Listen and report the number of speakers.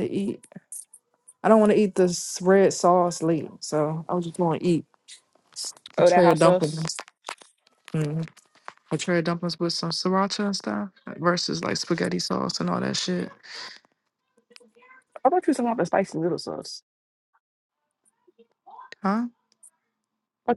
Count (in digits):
2